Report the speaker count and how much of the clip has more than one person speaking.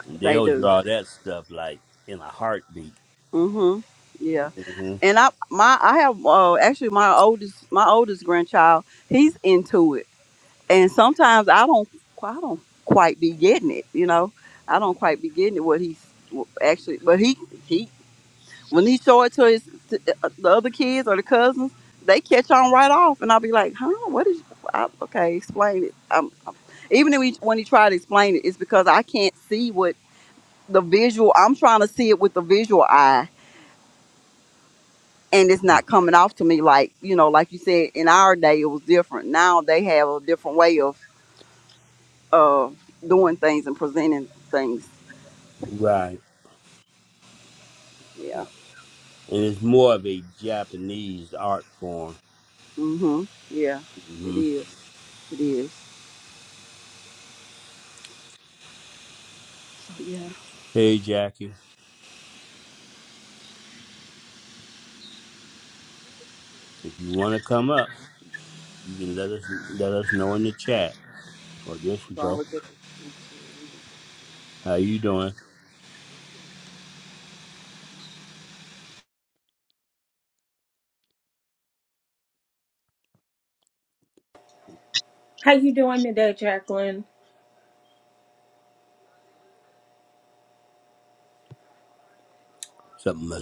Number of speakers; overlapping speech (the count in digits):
3, about 1%